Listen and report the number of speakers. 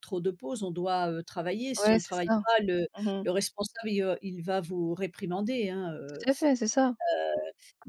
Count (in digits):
2